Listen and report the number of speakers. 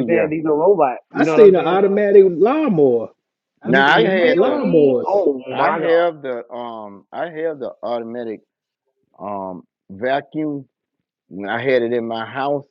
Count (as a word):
three